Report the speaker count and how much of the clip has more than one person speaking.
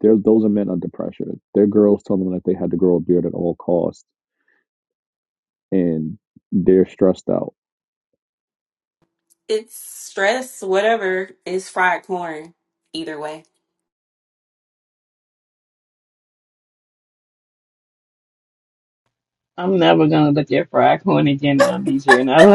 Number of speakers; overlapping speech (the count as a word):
three, no overlap